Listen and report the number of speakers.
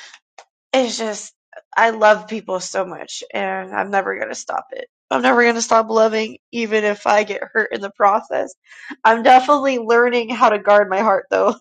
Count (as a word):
one